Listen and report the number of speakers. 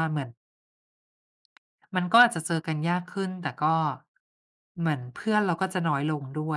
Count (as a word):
one